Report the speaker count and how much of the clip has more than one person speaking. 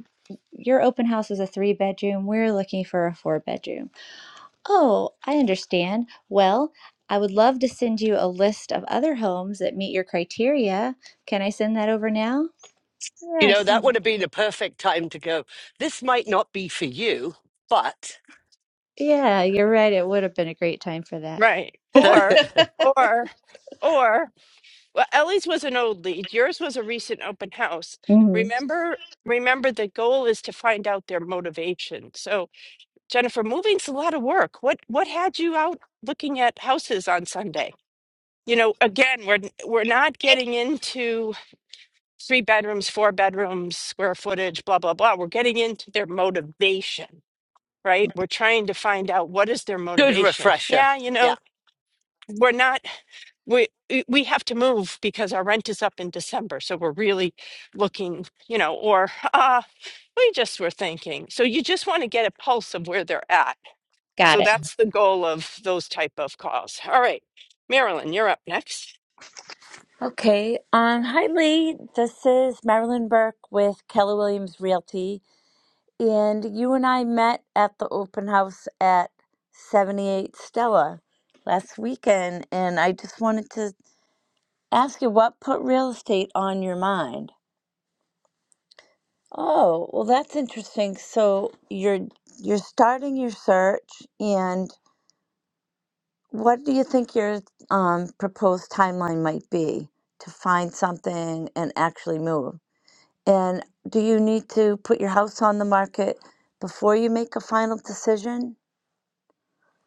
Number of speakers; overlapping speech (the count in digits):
4, about 2%